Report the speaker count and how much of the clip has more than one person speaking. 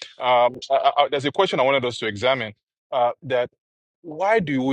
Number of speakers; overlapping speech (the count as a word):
one, no overlap